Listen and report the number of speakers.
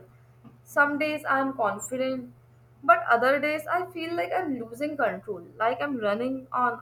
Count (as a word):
one